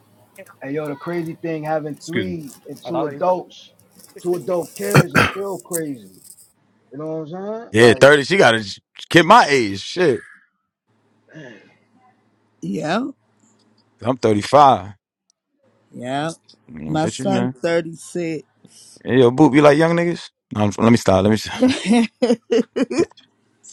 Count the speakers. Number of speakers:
3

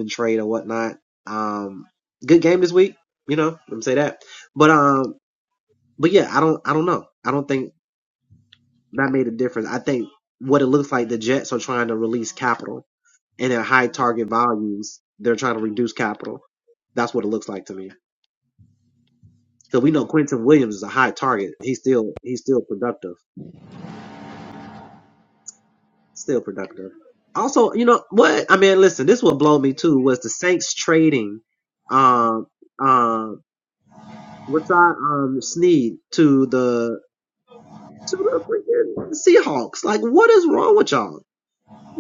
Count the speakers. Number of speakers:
1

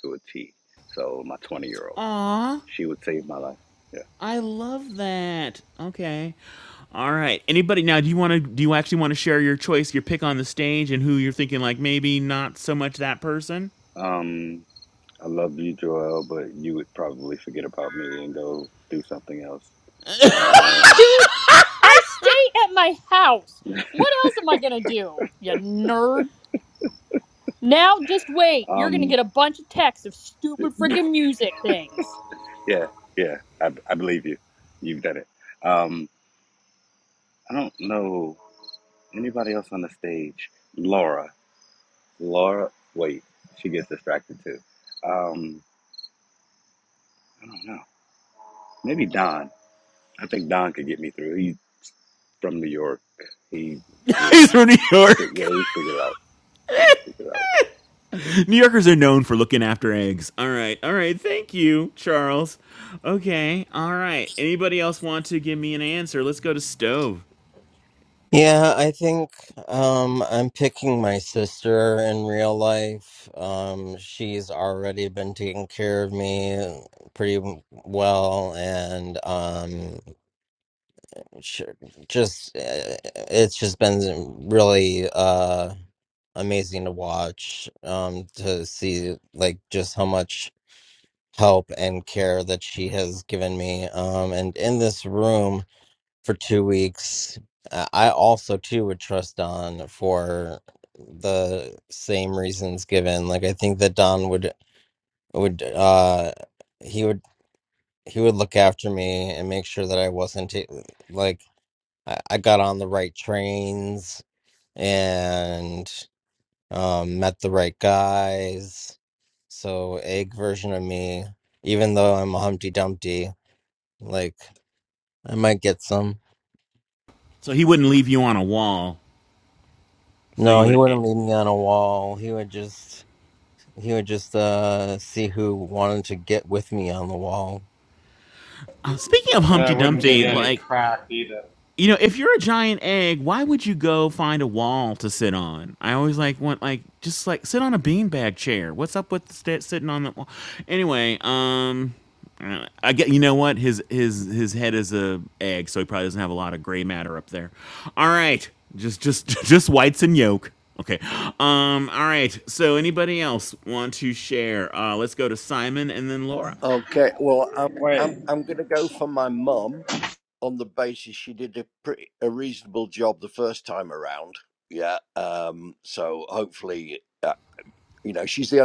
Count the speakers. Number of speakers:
6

